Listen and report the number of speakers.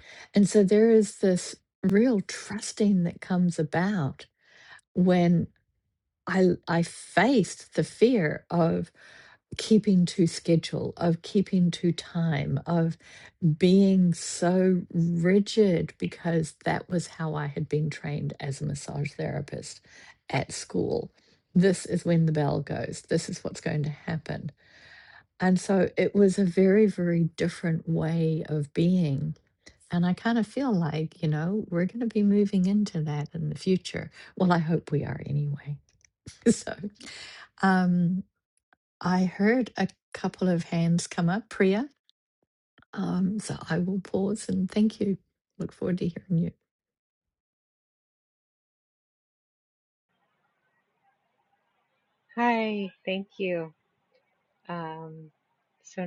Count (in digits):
2